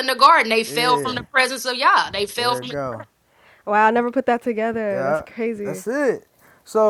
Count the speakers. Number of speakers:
3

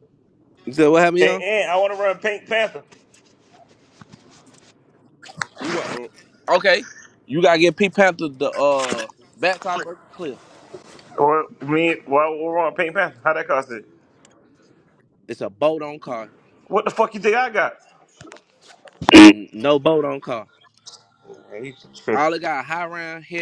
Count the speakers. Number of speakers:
2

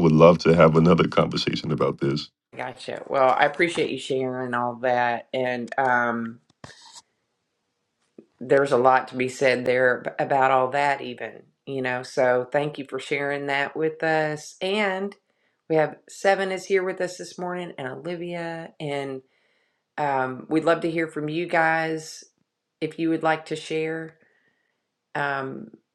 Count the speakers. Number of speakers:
2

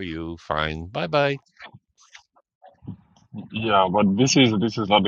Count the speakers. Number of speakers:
2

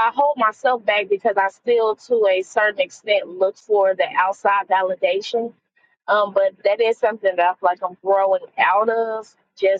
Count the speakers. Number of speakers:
1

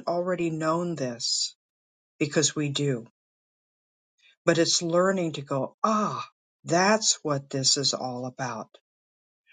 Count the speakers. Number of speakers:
1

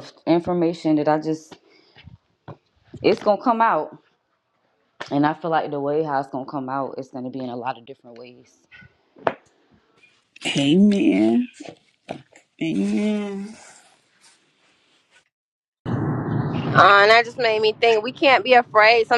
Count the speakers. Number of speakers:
3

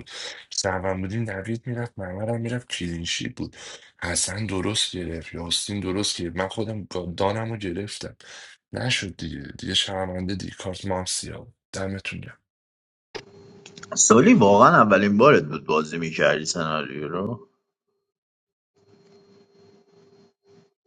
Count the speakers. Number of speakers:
2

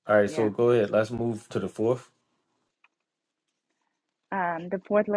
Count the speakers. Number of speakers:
2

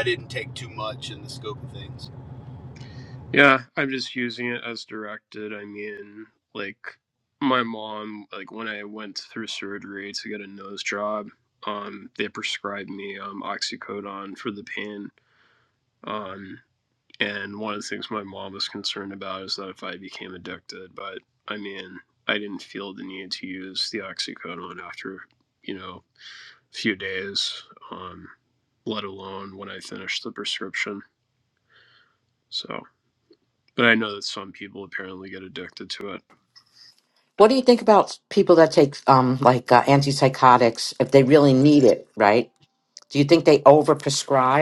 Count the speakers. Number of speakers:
3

